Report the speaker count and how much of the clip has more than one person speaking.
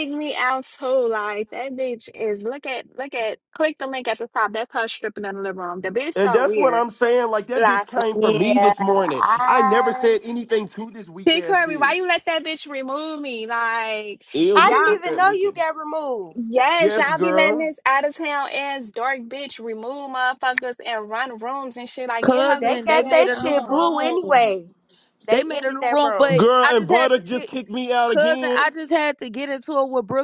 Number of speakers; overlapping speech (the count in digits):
4, about 34%